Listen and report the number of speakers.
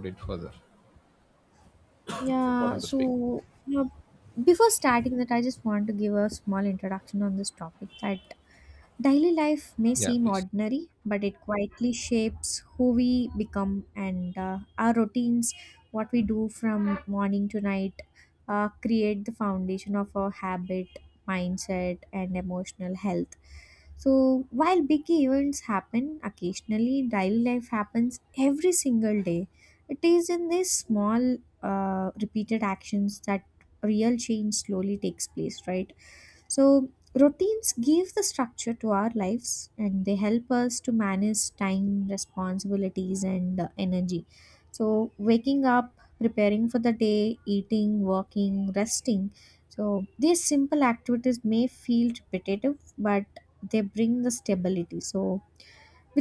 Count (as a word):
two